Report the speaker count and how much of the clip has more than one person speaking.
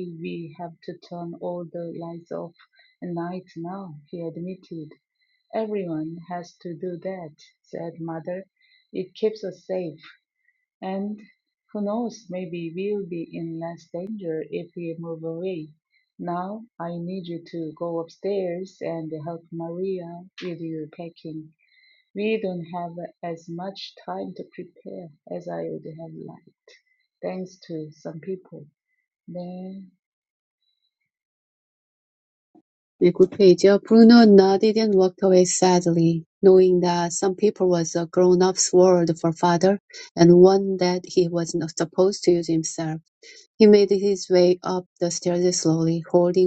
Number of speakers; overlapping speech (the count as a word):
two, no overlap